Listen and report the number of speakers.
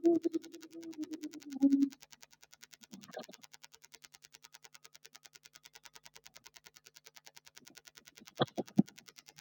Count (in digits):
0